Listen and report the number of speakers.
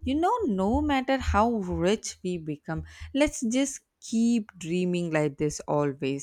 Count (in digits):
1